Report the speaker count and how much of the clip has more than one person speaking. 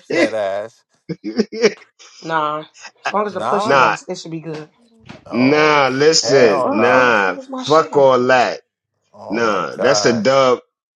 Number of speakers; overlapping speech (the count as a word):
three, about 38%